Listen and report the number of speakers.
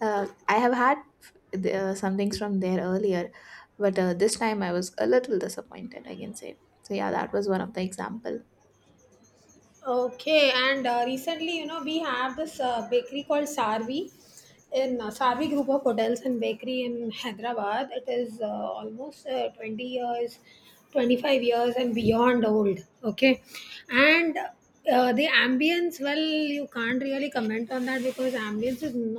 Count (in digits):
2